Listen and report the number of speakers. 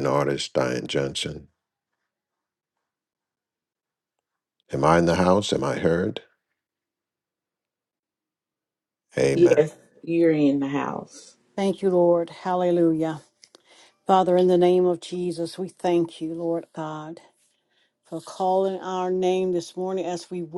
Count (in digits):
3